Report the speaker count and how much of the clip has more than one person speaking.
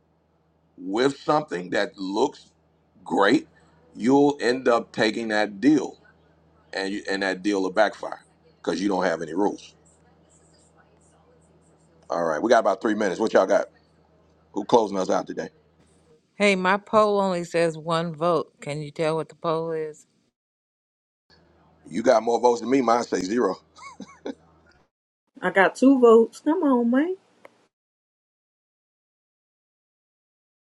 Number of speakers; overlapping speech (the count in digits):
3, no overlap